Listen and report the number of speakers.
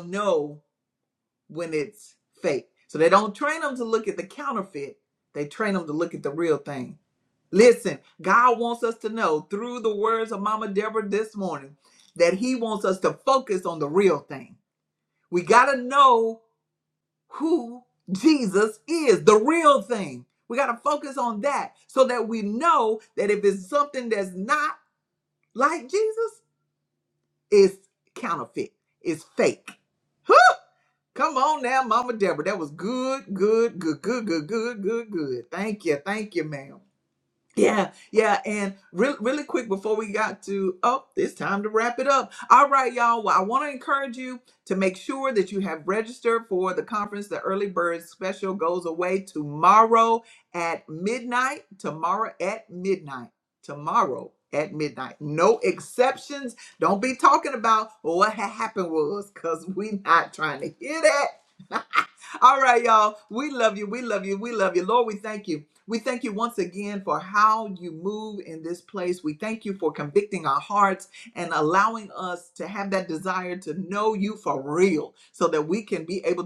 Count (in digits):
1